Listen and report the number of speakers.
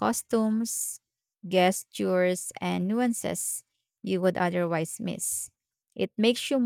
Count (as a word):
one